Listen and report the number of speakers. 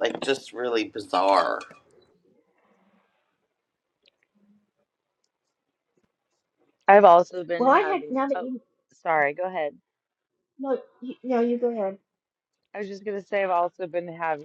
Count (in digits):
3